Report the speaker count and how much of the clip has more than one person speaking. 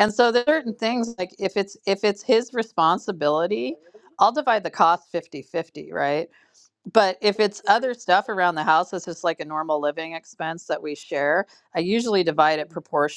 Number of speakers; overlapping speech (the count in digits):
1, no overlap